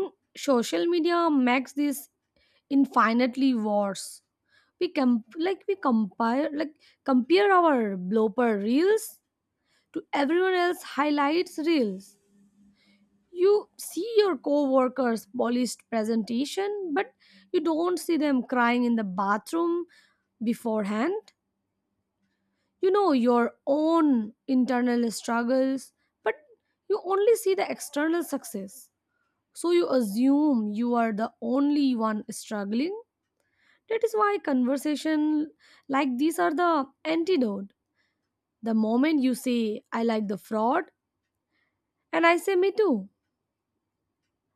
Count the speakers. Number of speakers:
1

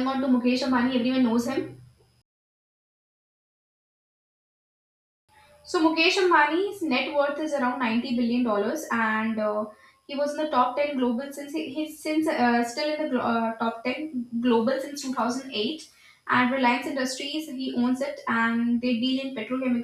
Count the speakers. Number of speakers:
1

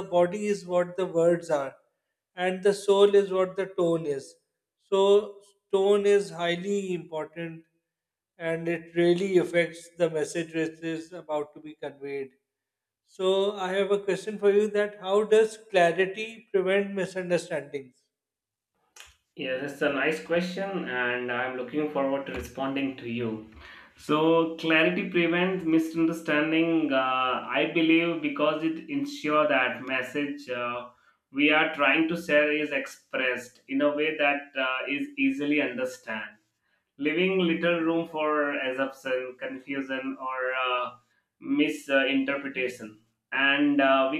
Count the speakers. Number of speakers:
2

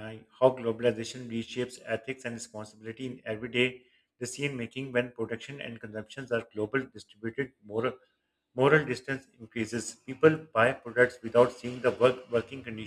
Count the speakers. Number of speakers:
1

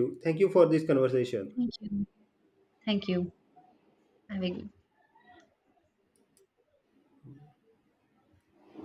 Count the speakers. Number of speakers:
2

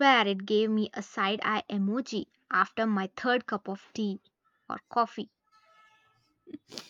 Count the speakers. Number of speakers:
1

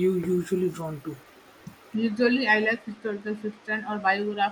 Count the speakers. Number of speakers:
2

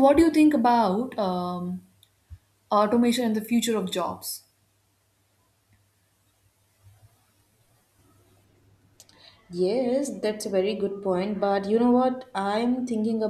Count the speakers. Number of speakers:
2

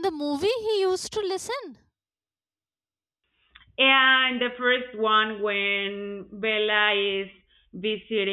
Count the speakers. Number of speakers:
2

